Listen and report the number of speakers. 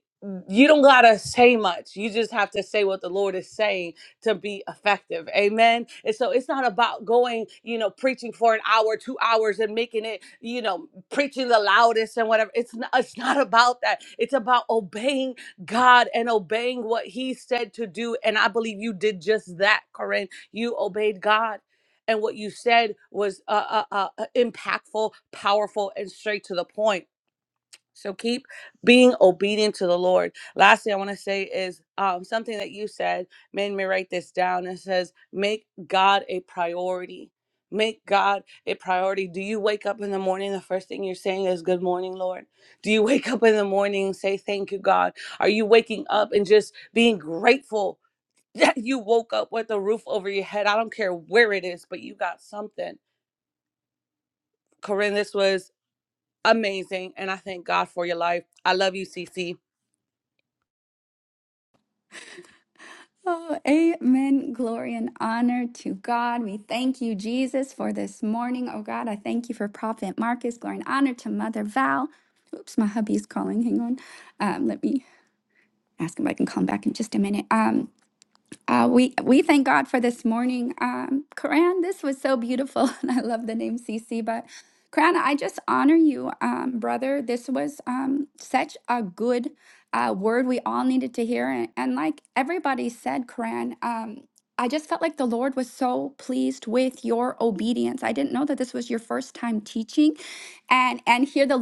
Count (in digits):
2